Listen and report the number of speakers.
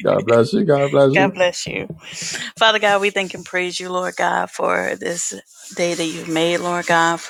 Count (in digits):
2